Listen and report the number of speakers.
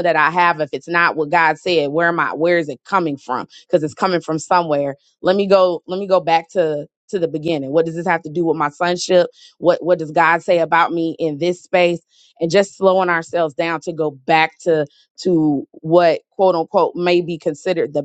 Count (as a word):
one